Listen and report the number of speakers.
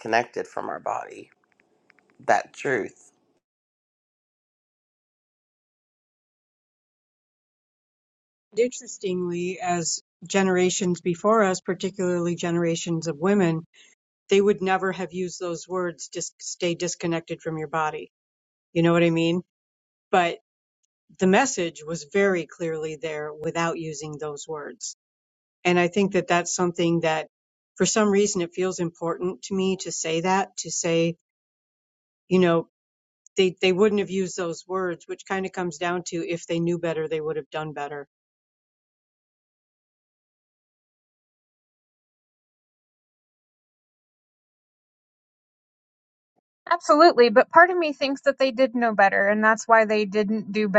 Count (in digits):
3